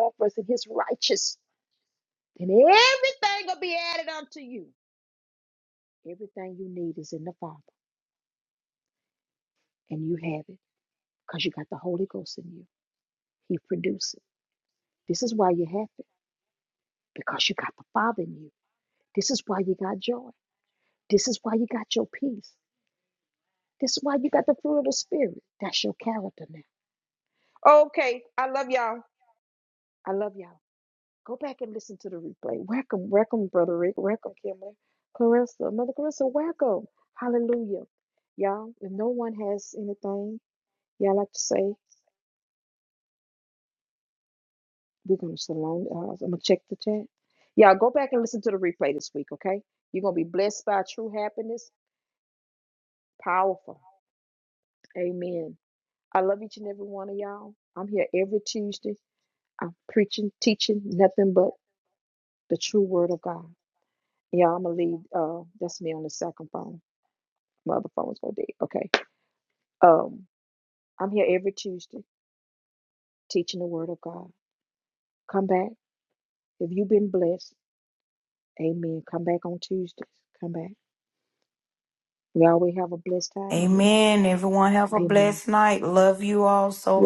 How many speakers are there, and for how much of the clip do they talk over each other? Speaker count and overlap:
2, about 1%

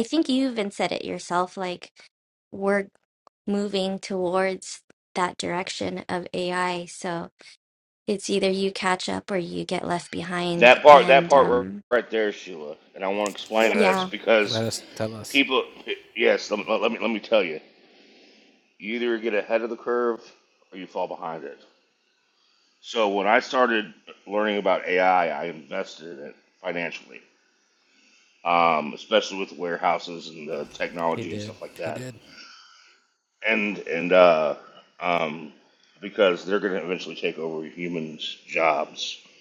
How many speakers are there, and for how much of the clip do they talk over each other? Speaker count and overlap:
3, about 7%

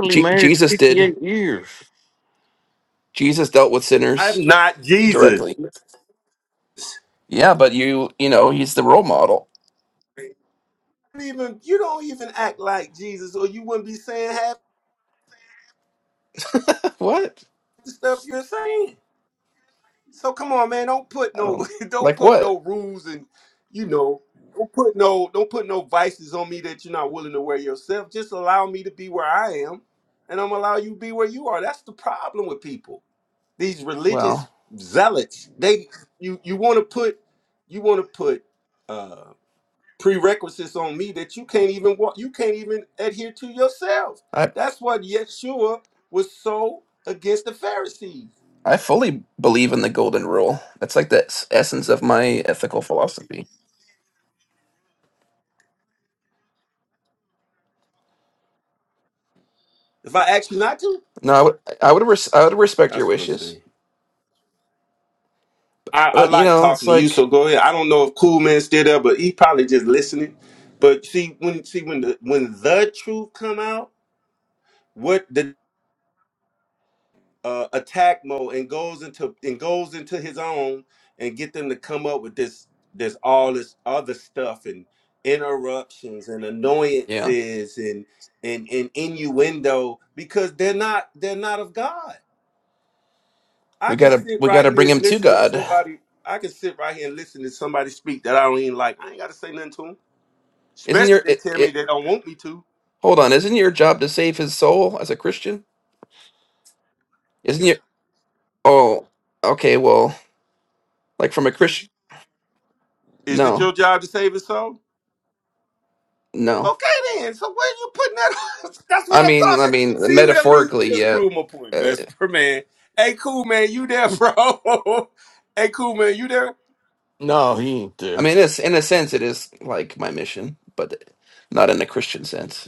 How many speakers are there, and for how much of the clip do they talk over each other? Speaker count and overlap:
3, about 7%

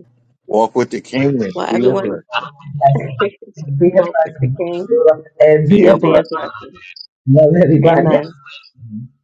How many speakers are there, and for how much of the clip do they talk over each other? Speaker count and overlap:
3, about 24%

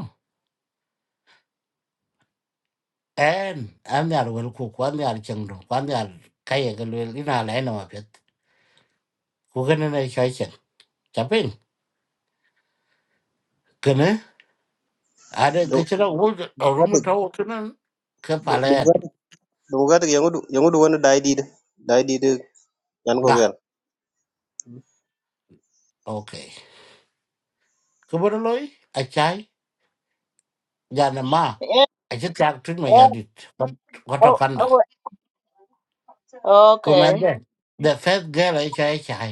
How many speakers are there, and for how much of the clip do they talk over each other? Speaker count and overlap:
3, about 4%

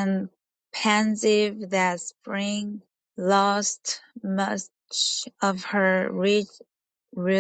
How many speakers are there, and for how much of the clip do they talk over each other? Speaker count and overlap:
1, no overlap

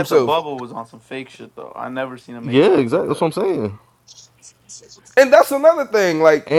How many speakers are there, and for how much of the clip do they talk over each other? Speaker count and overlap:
3, about 17%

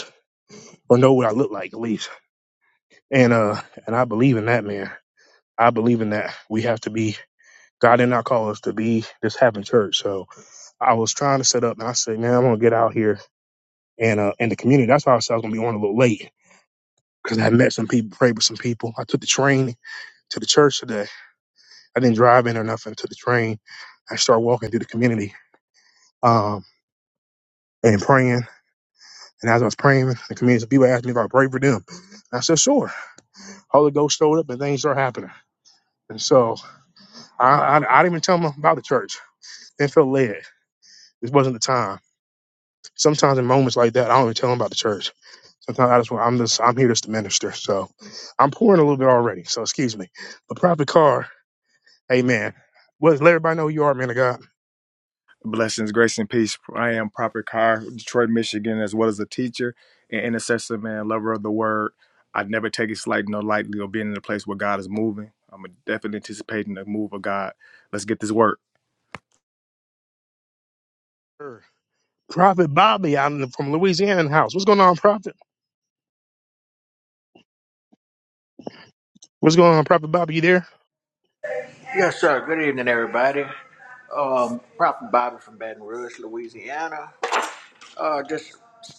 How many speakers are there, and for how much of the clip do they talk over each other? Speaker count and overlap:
3, no overlap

